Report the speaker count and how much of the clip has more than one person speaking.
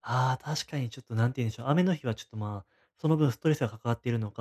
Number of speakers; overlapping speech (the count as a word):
one, no overlap